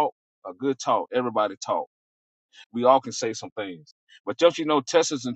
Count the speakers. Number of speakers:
1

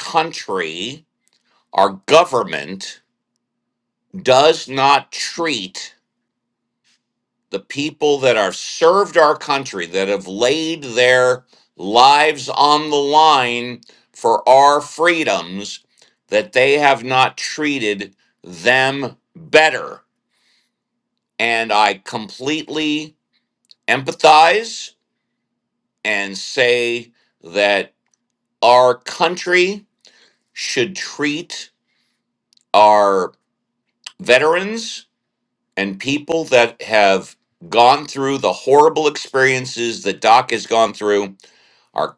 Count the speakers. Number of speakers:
1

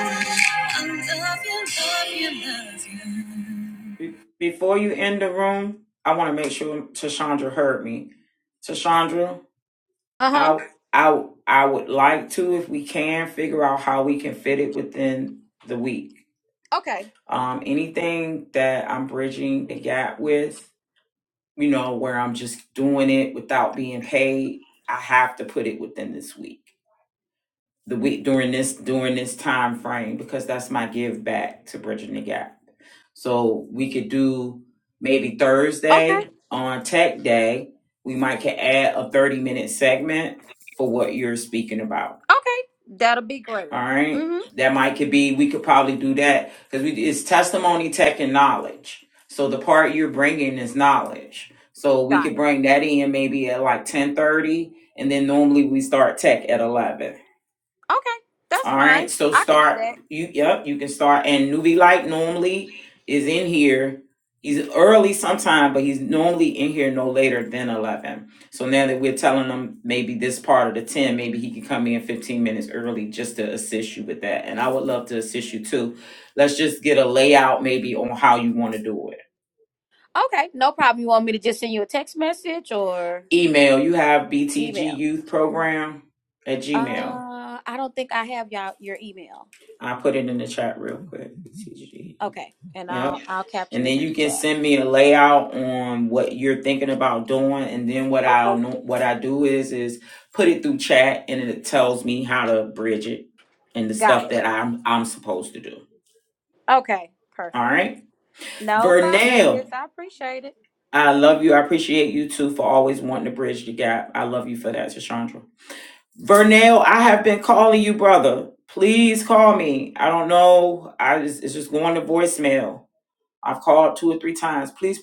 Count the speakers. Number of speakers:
3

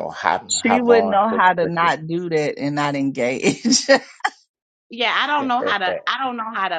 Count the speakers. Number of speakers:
3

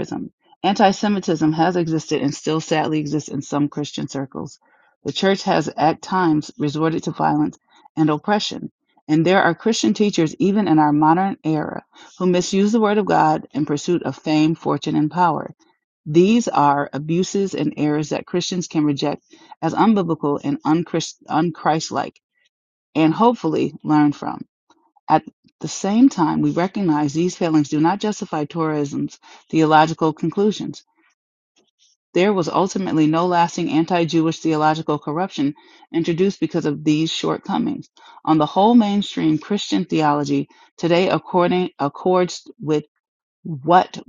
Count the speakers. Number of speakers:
1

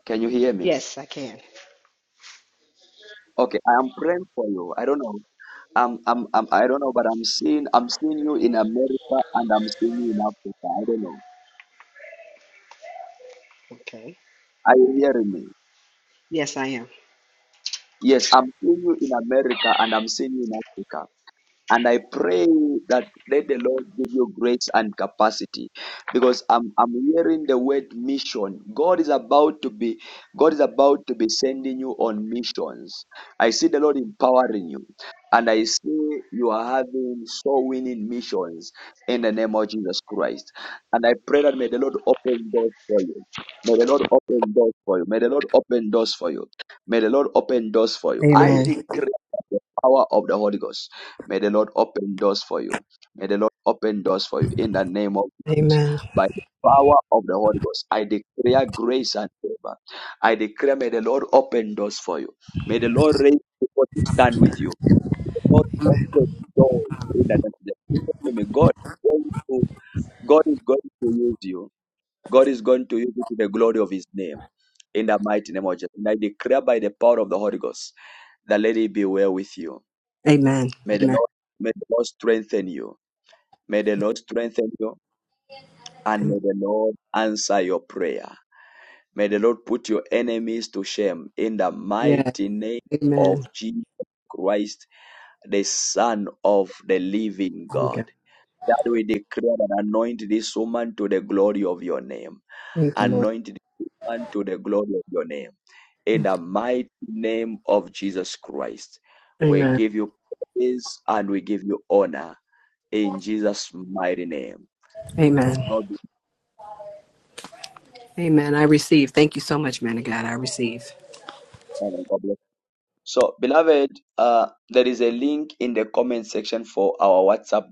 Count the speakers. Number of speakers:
2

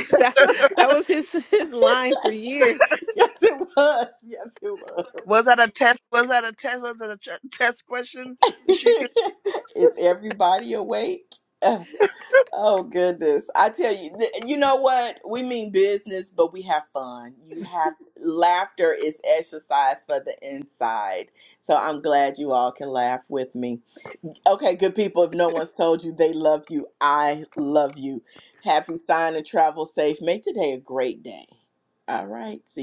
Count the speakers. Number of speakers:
3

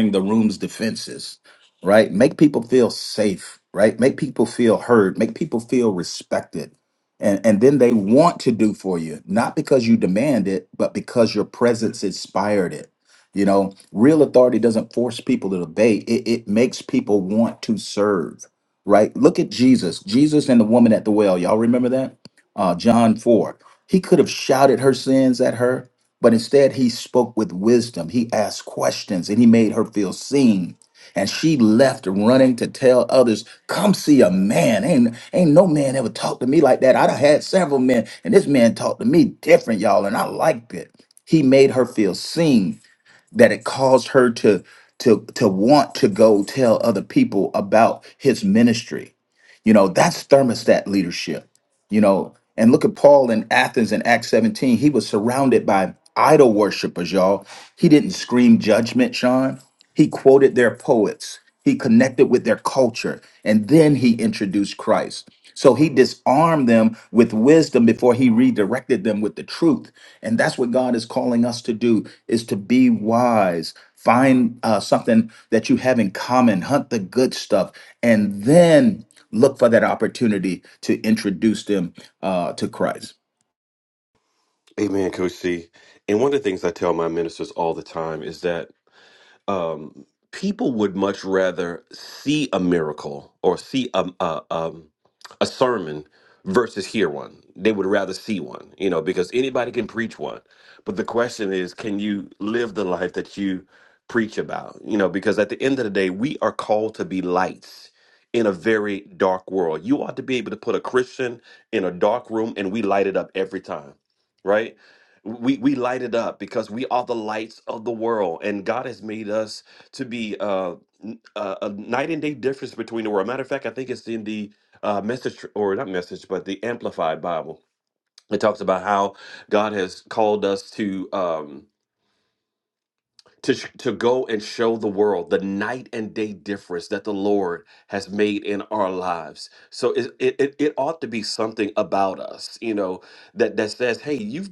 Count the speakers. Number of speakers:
2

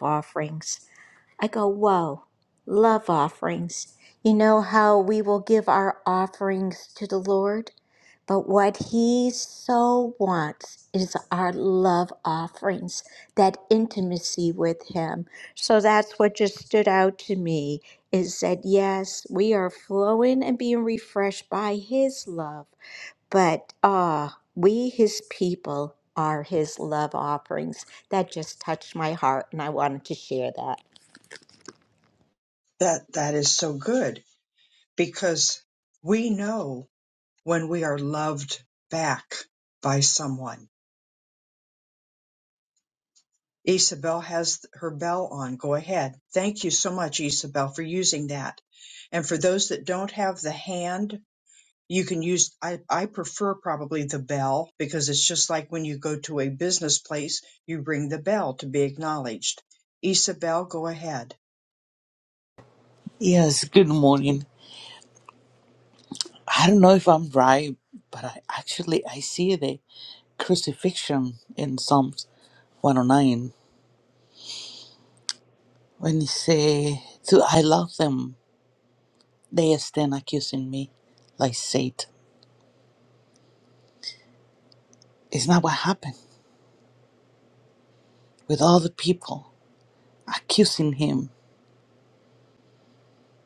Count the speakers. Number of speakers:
3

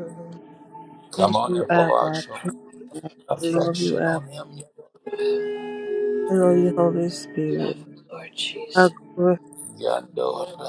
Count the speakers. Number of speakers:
3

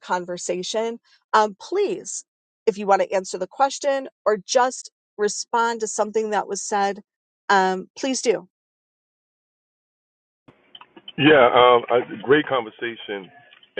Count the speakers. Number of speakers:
2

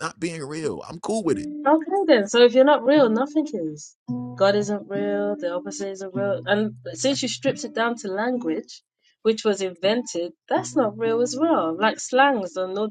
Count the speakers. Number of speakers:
2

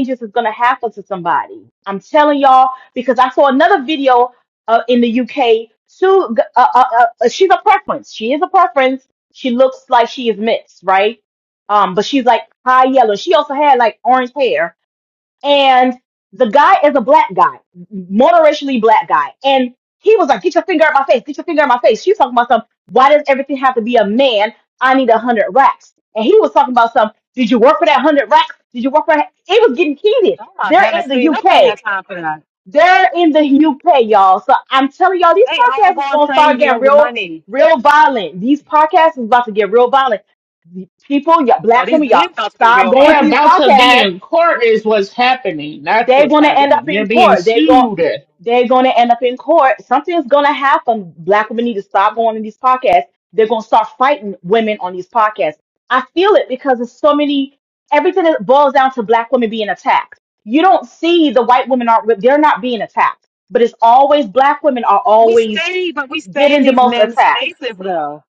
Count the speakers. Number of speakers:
3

